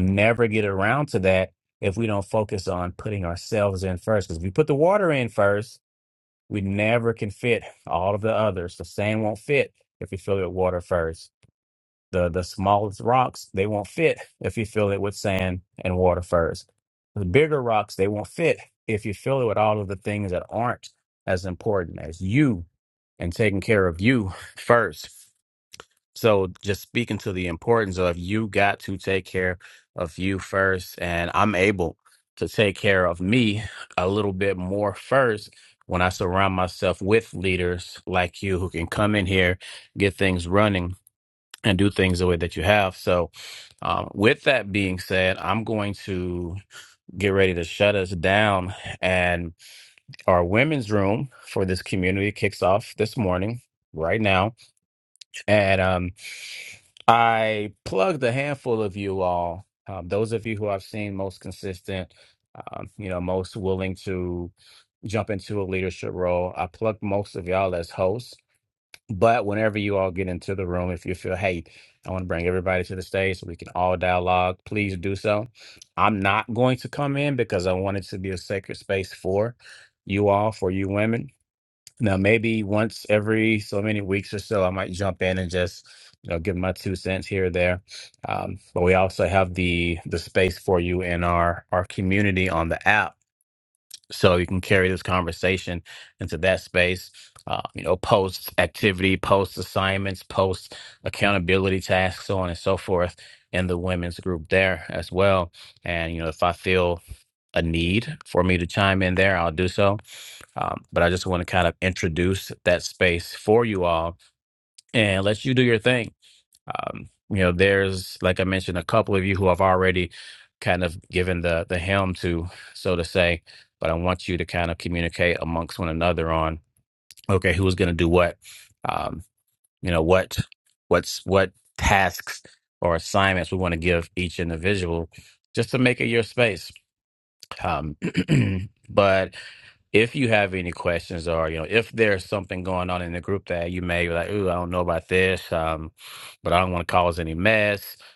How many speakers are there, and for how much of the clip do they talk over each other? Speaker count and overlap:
one, no overlap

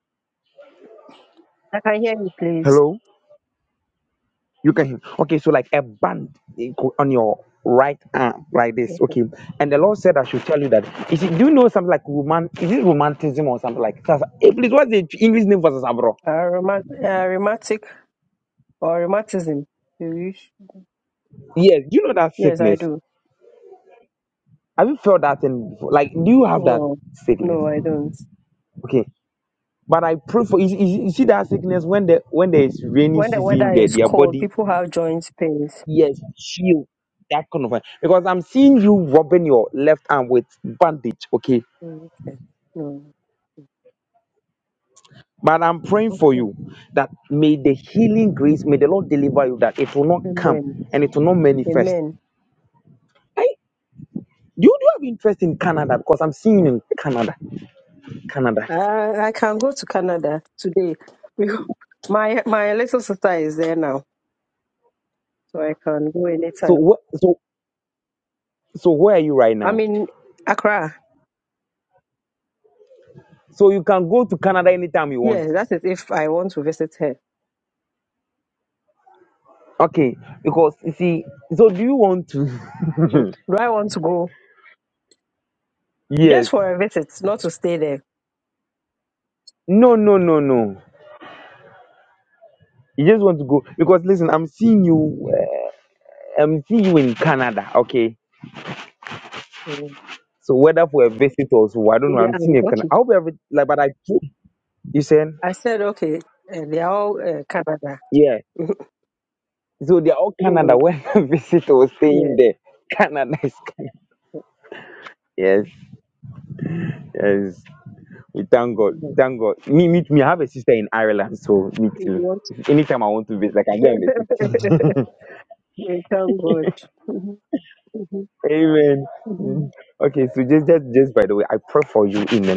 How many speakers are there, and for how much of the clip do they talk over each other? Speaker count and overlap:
two, about 6%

